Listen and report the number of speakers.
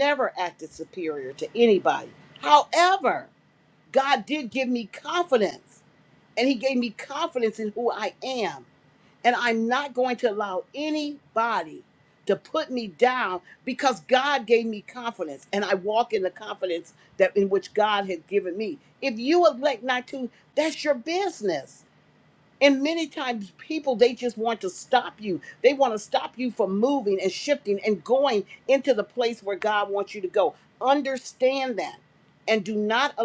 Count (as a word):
one